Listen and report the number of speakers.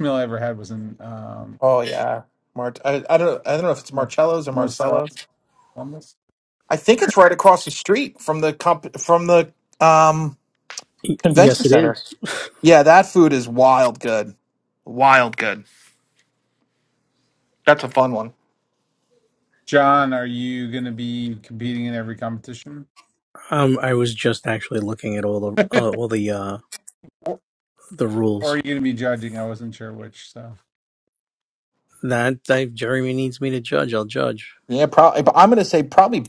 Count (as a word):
three